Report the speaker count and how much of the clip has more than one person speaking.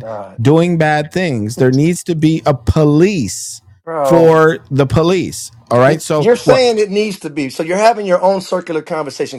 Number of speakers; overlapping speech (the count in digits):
2, about 7%